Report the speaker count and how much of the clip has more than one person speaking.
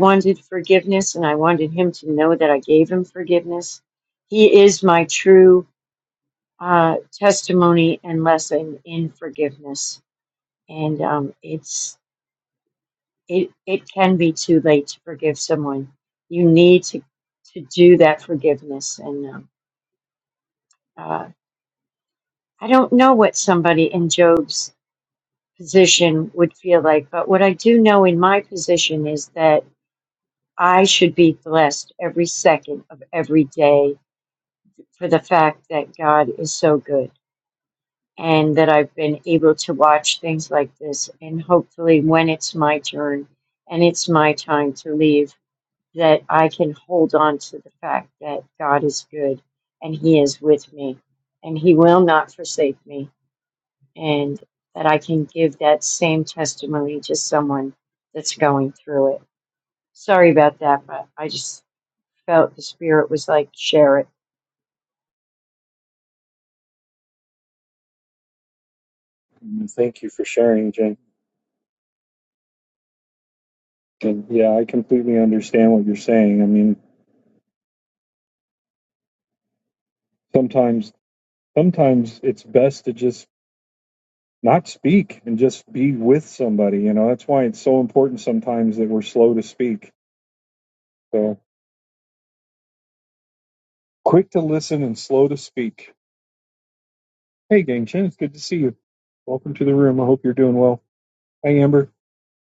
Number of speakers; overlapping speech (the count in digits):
2, no overlap